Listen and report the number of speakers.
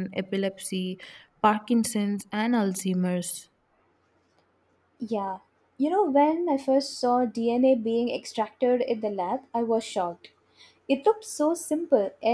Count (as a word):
two